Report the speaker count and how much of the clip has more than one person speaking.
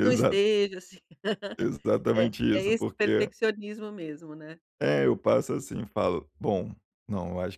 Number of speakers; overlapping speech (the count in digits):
2, about 20%